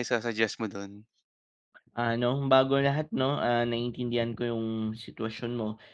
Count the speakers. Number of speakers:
two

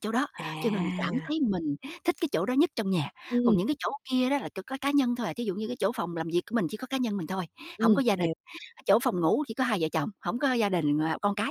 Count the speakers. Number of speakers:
two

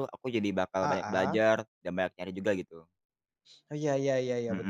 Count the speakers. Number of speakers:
two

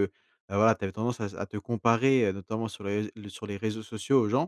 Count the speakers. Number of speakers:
one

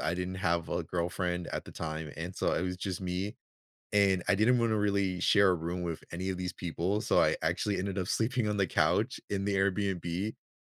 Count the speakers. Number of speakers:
one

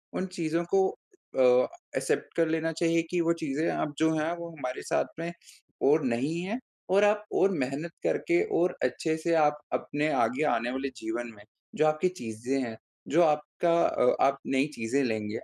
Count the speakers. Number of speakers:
one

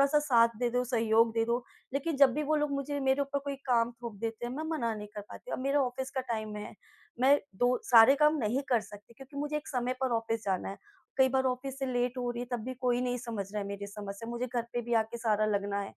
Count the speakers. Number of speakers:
one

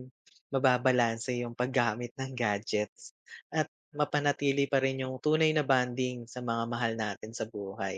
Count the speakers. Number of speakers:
one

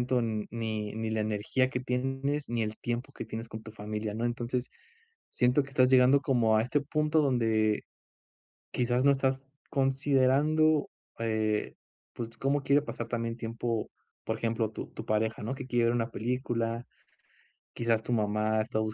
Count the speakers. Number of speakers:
one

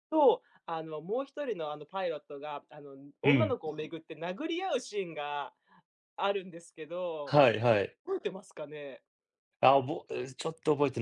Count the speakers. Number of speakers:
two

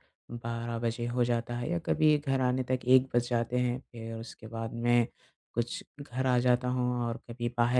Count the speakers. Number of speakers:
one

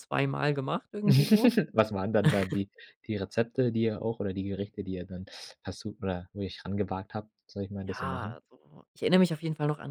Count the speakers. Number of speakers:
two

